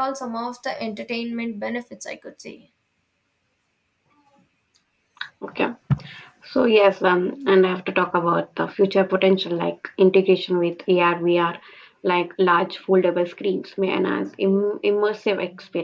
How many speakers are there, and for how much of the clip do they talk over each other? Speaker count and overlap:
2, no overlap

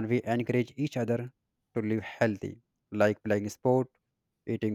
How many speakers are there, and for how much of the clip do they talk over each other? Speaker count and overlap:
1, no overlap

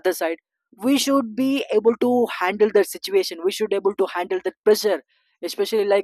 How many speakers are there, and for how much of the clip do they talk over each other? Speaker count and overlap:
1, no overlap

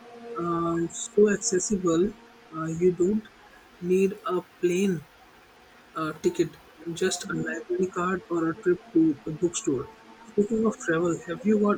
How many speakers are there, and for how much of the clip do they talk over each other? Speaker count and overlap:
1, no overlap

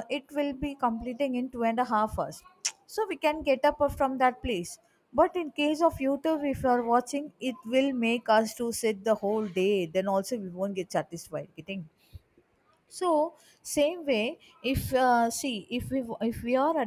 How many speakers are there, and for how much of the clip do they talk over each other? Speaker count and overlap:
1, no overlap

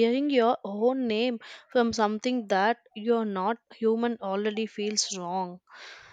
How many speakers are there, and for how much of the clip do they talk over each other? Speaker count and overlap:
1, no overlap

